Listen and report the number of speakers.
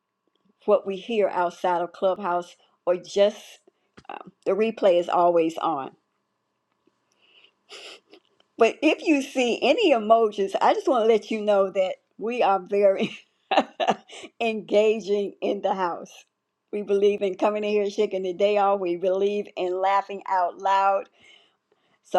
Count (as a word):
one